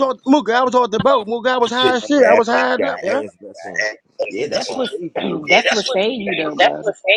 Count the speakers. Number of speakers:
3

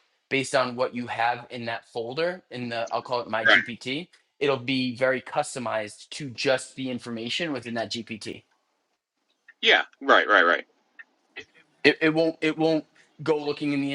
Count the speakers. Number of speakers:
2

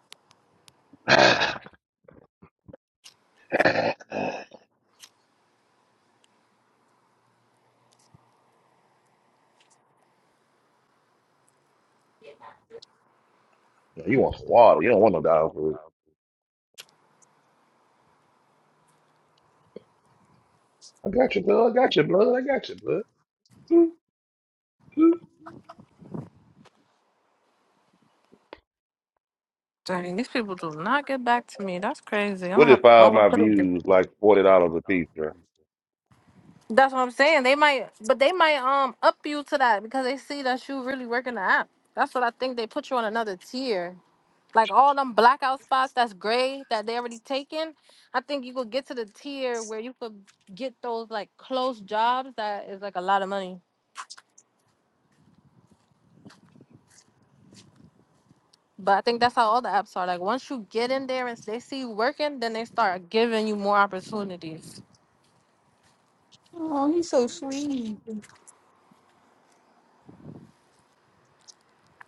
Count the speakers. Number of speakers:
3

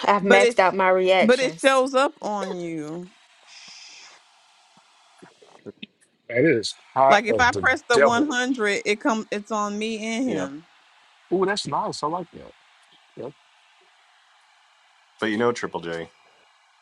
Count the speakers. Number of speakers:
4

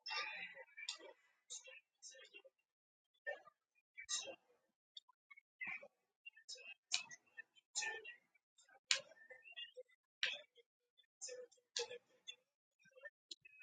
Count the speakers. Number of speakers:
0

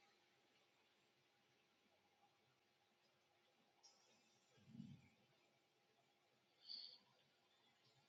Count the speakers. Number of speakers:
0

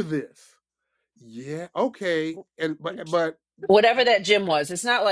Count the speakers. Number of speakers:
2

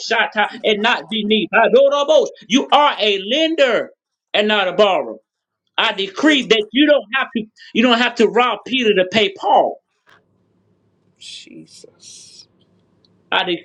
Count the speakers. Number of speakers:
2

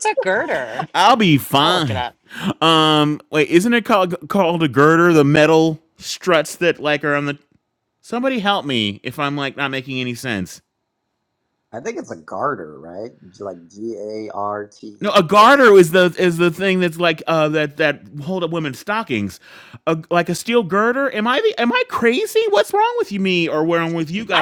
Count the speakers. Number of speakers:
3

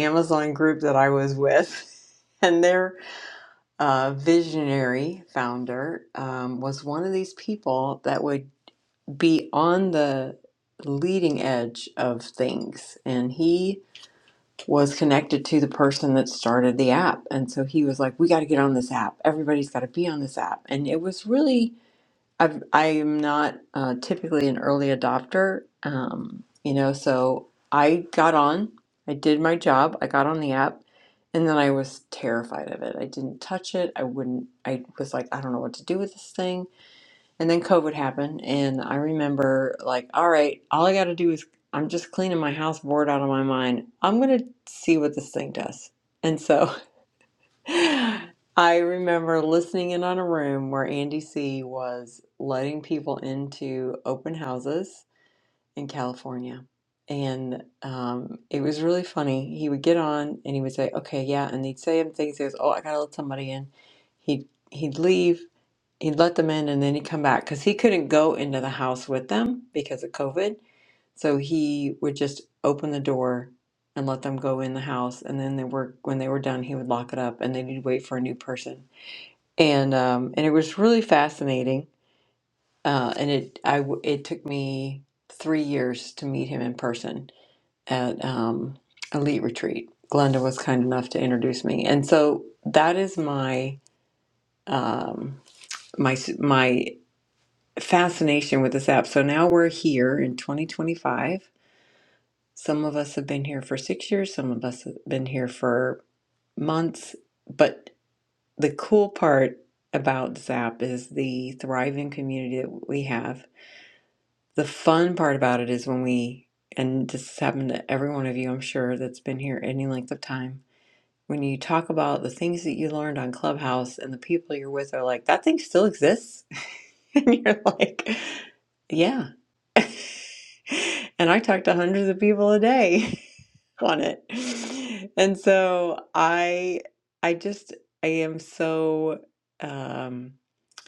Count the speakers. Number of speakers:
1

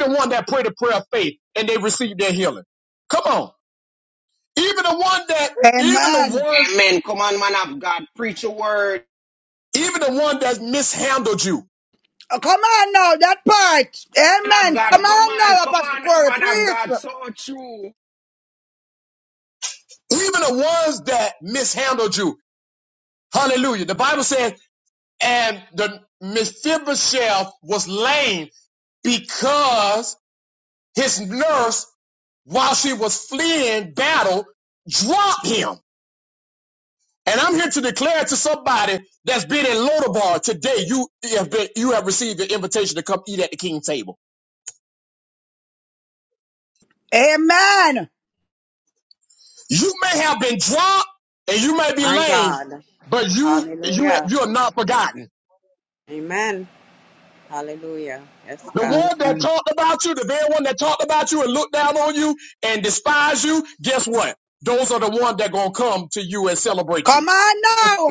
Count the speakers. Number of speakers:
4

